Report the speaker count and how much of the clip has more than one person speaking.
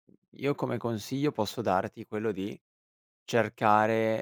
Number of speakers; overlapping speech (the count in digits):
1, no overlap